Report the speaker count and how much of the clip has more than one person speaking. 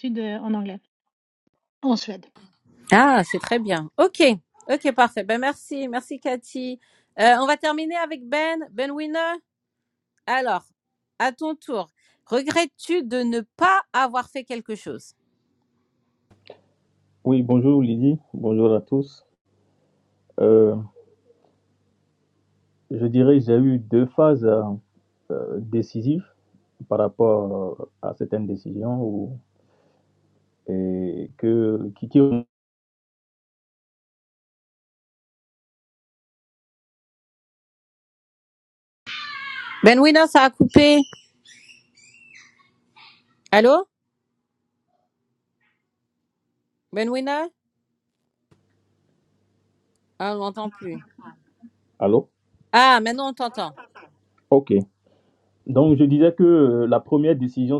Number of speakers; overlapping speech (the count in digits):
3, no overlap